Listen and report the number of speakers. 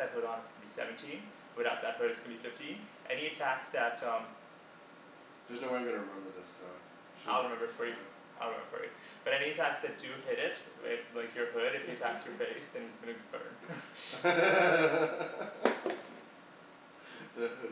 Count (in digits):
2